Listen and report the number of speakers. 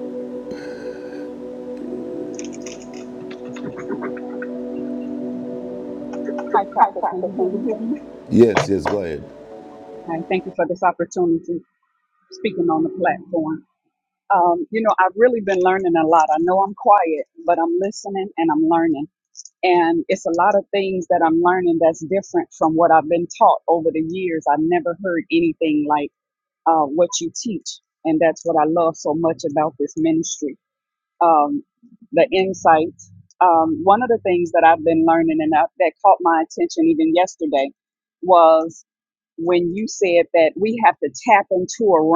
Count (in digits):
2